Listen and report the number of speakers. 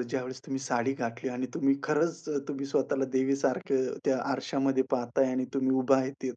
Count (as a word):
one